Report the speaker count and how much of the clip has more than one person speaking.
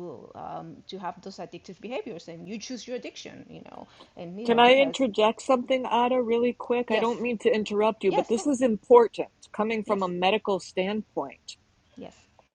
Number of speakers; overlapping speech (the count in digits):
2, about 11%